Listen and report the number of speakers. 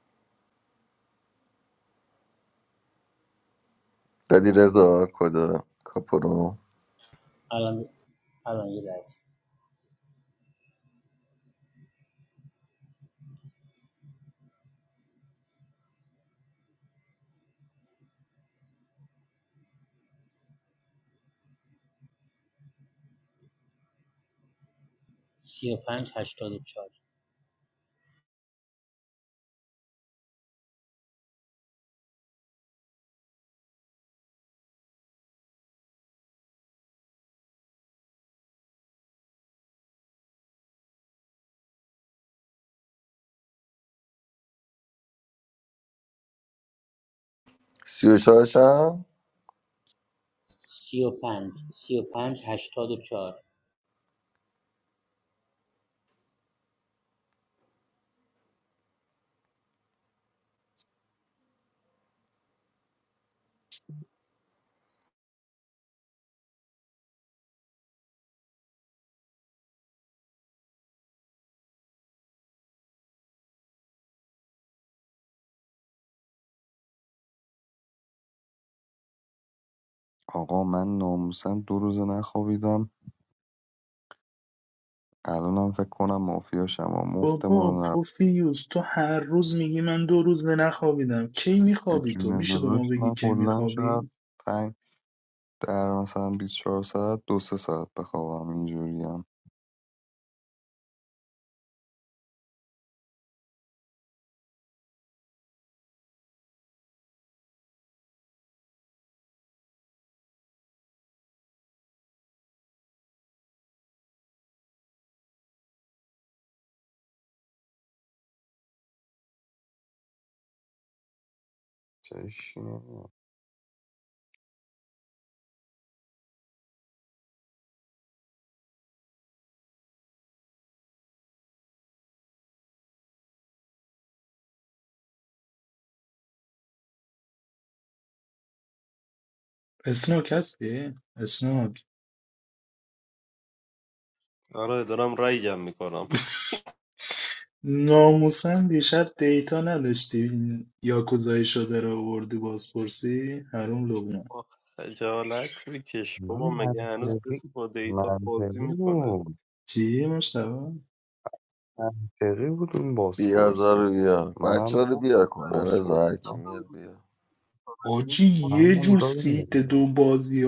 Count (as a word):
five